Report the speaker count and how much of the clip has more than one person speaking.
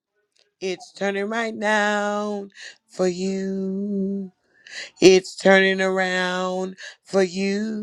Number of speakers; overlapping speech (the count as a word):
one, no overlap